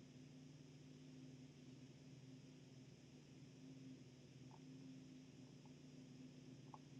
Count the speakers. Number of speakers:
0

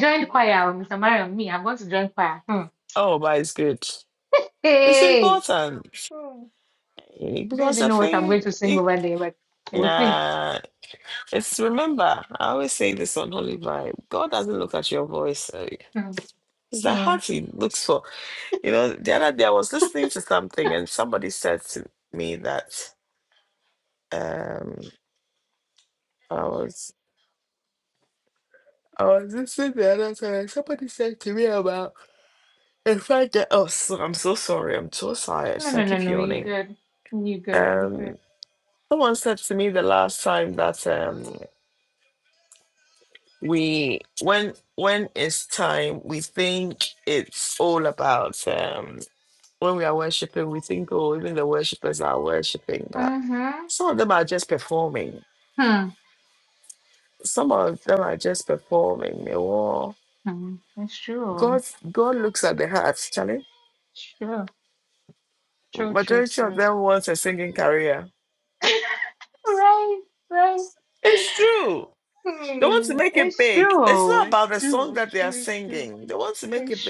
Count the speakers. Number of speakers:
2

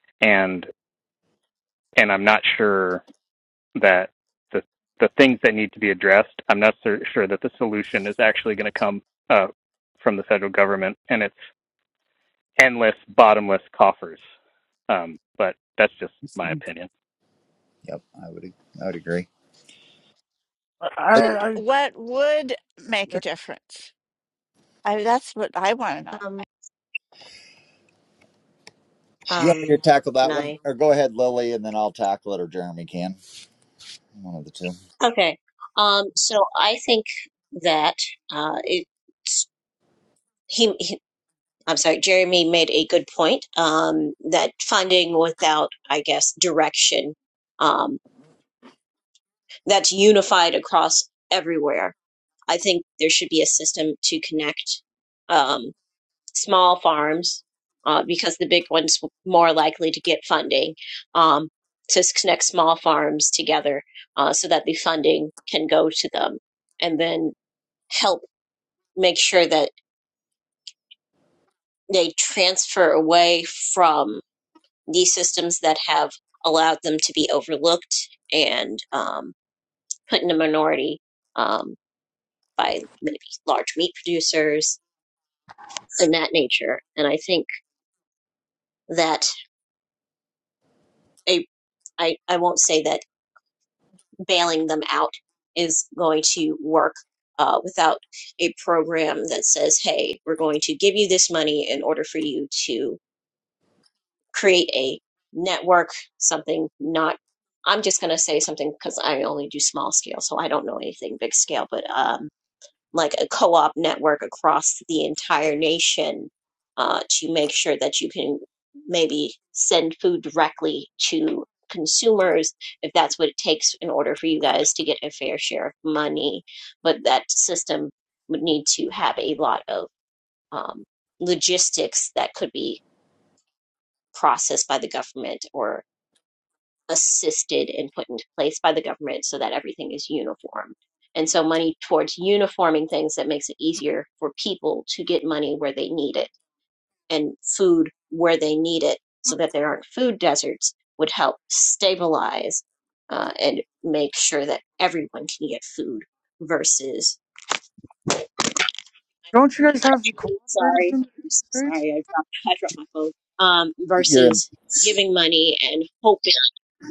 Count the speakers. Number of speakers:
5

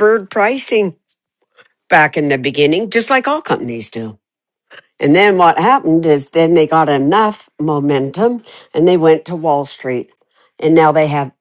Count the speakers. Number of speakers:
1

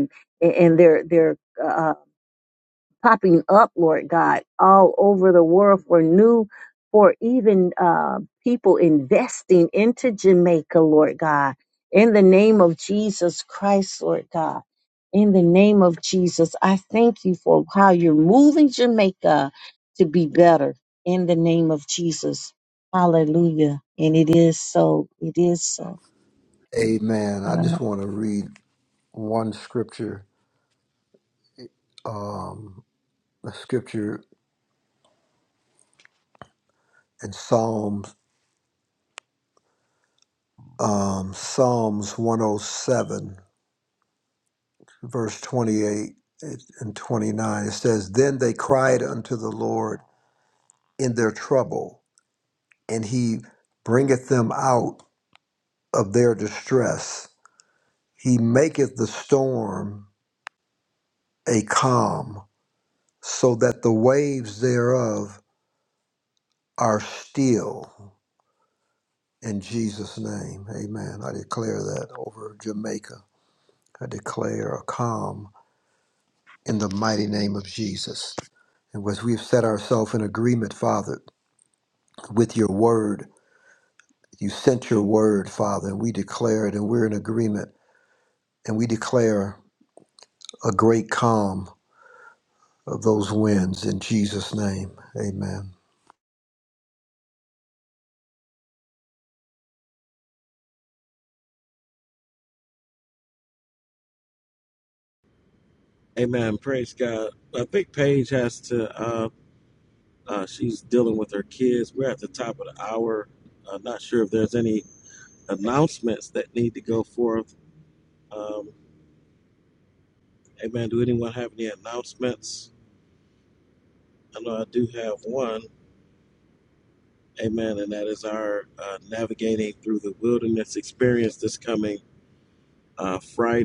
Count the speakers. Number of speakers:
3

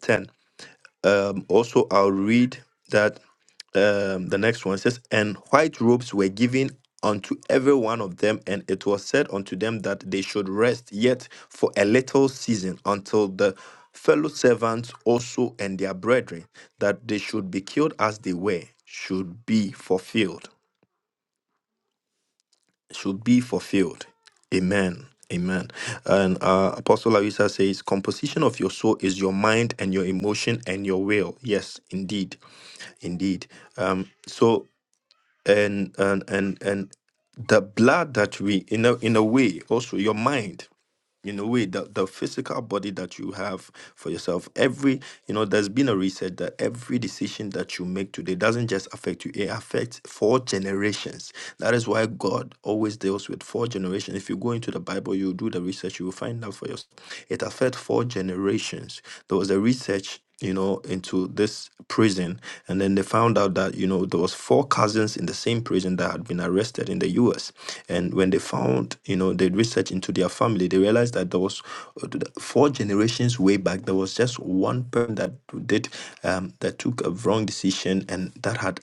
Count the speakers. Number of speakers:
1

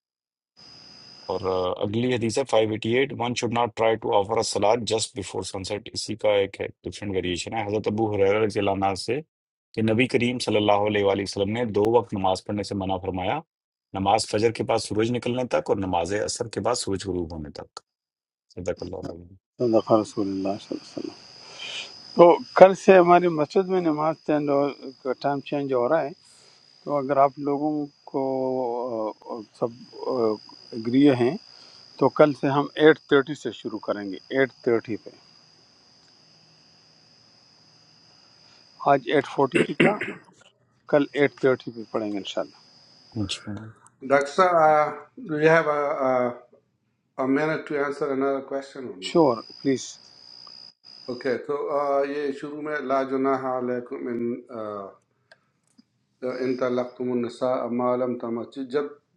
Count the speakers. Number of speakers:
3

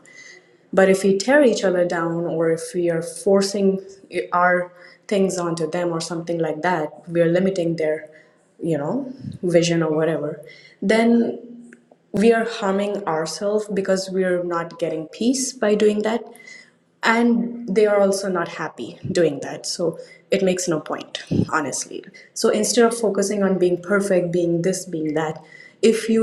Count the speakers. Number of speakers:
1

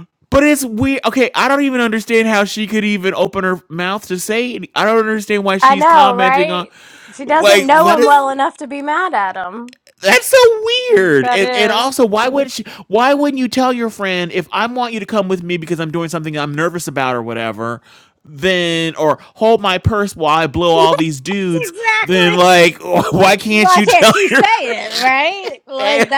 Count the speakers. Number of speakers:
2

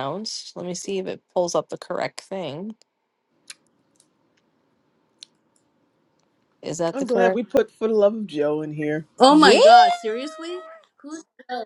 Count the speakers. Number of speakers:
3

